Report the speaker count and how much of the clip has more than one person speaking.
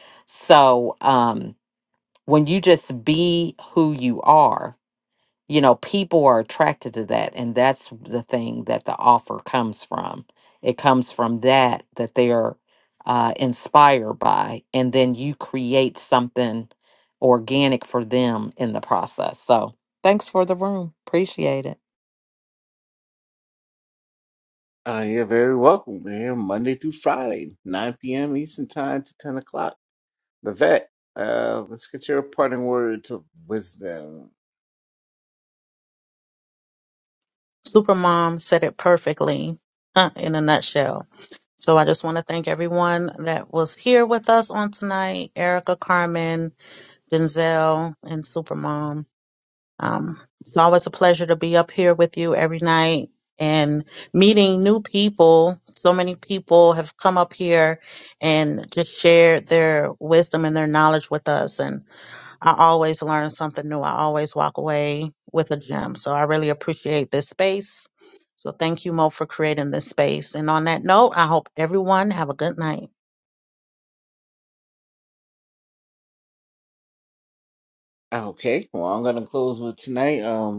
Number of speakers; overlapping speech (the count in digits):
3, no overlap